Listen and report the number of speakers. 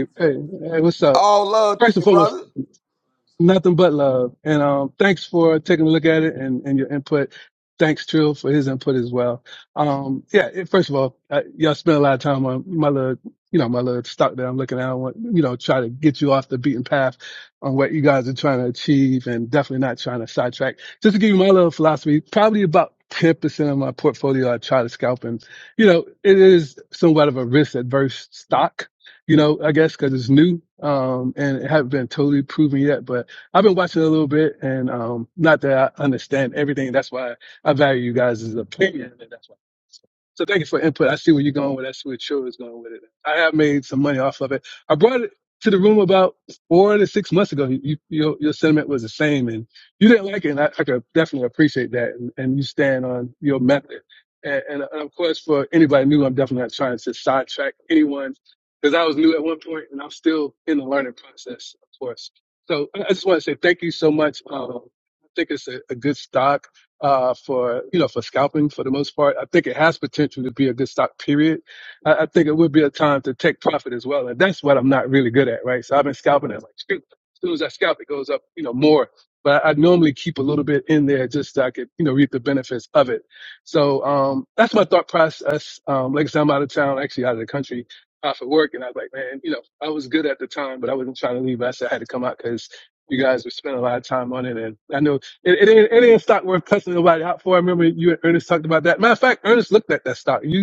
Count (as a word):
two